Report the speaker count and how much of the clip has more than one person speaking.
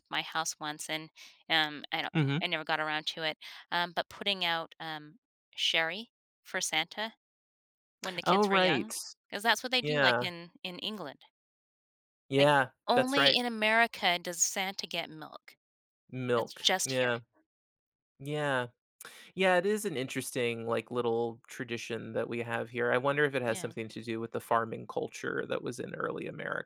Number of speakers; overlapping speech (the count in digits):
2, about 11%